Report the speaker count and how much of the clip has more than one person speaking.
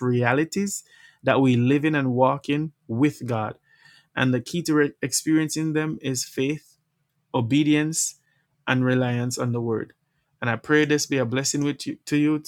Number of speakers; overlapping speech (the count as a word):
one, no overlap